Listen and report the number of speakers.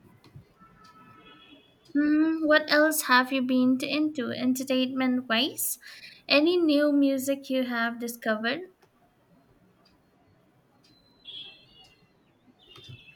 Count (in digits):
1